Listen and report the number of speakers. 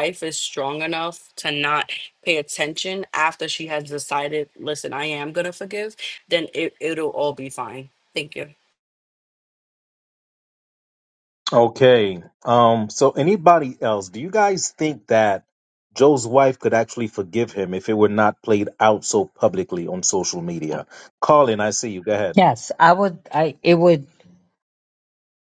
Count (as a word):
three